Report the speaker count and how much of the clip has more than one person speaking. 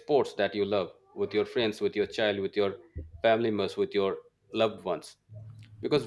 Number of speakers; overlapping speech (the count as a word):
one, no overlap